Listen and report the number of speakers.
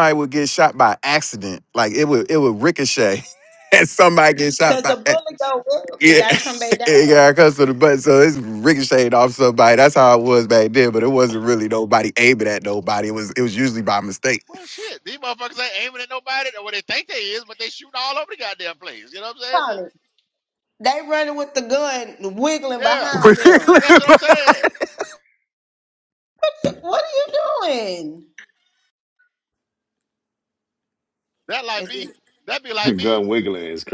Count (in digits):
4